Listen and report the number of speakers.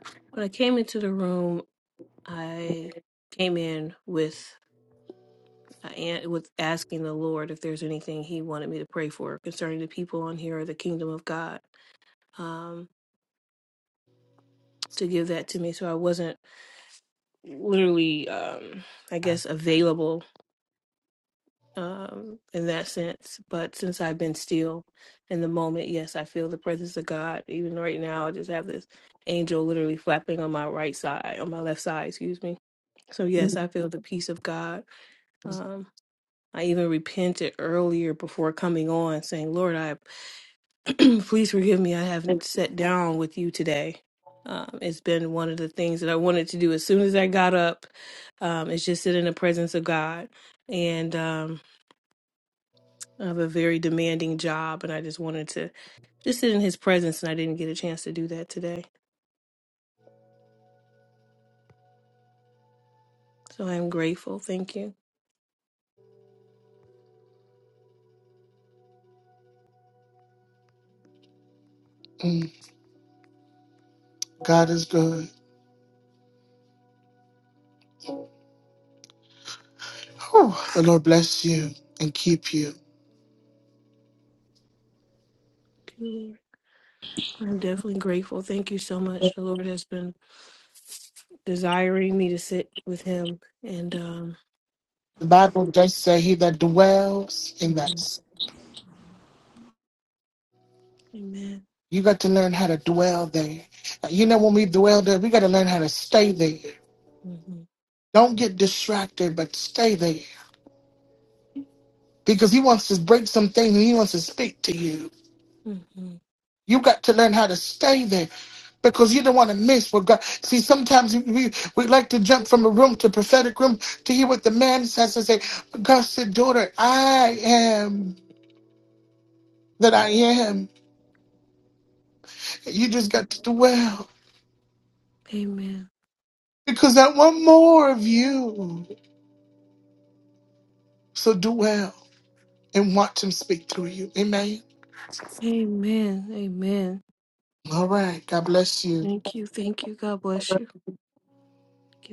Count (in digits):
2